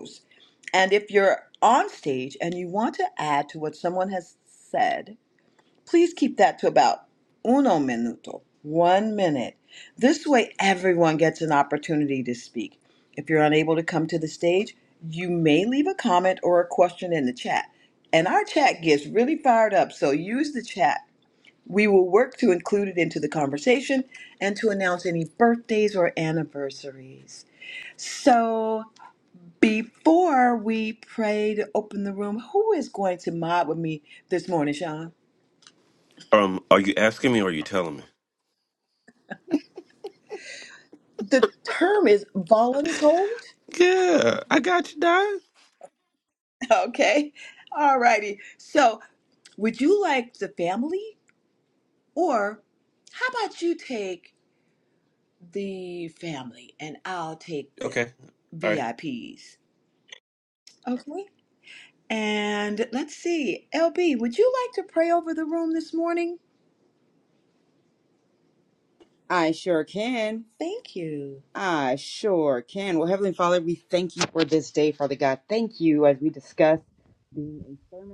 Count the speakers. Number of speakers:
3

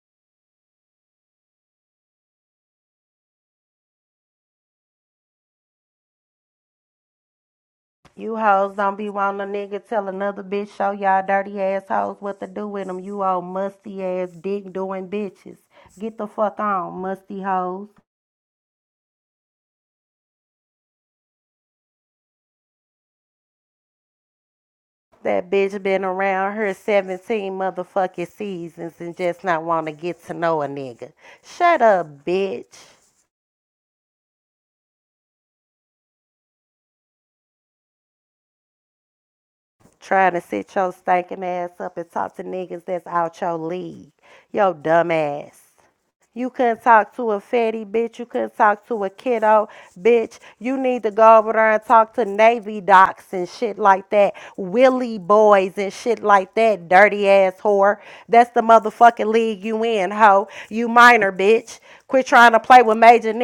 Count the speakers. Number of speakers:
1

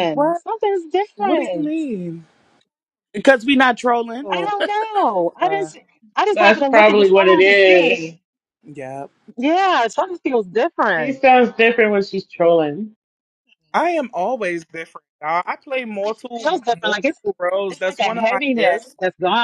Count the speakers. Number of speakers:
4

